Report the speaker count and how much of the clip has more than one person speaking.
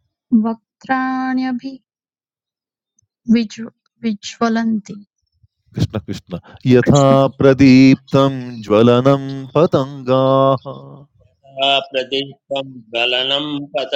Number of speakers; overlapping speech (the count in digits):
3, about 3%